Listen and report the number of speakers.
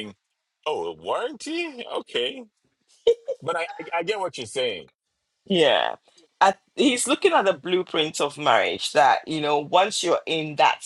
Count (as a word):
two